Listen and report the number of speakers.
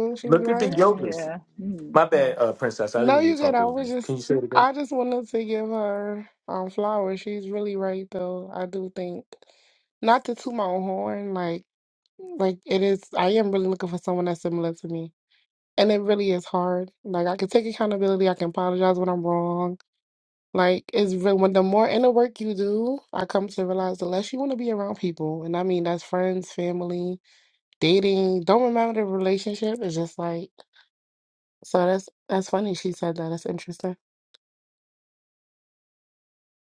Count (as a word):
three